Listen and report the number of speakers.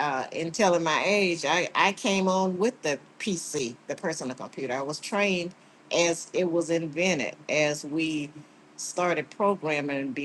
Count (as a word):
one